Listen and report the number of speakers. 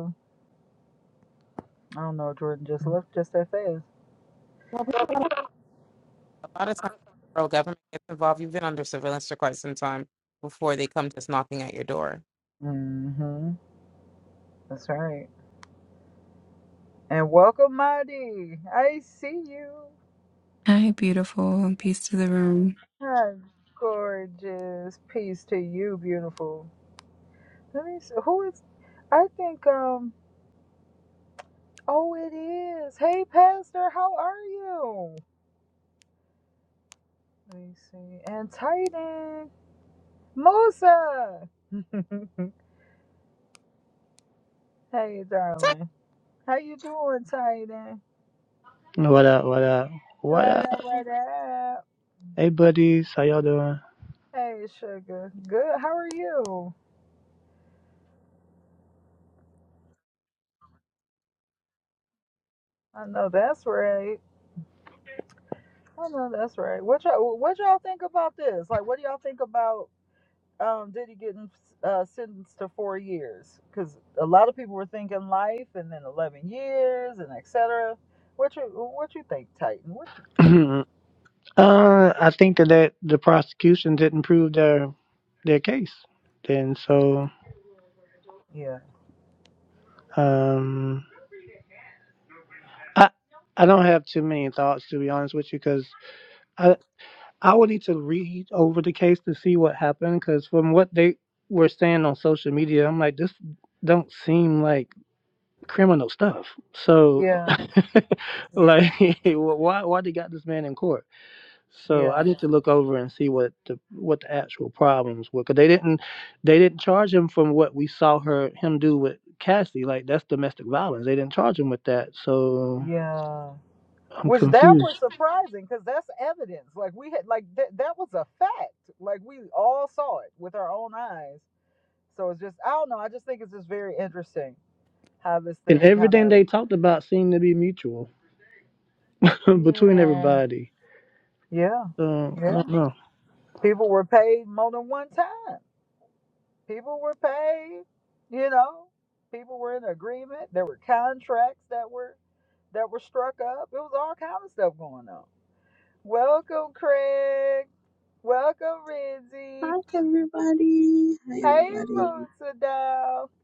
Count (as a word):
five